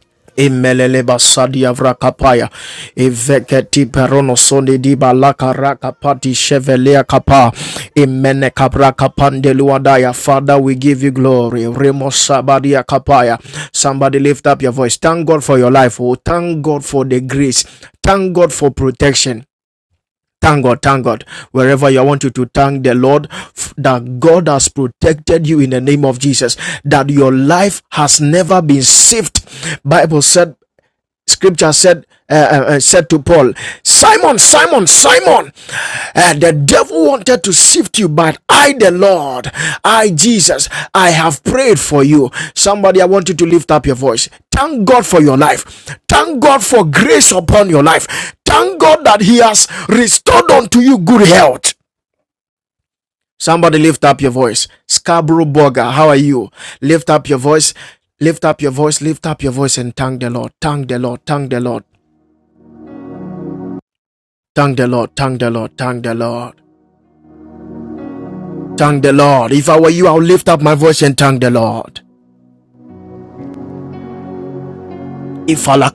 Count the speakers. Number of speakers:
1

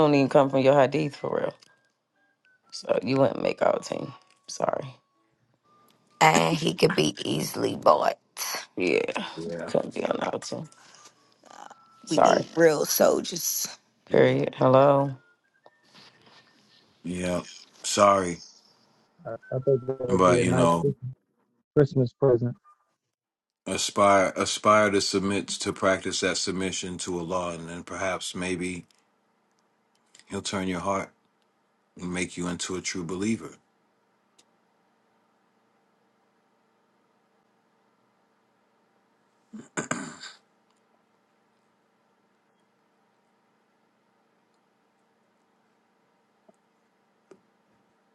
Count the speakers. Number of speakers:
4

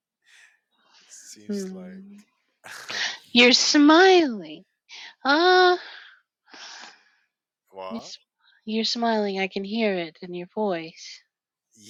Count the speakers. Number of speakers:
2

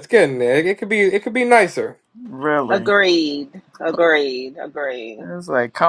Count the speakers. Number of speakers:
3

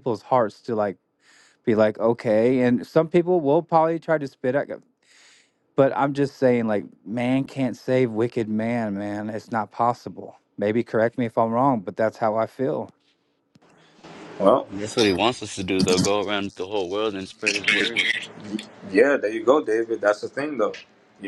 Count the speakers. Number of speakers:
3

